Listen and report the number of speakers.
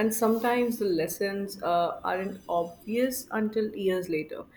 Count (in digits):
1